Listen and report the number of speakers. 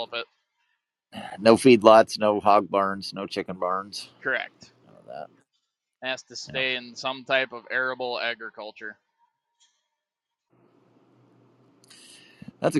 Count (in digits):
2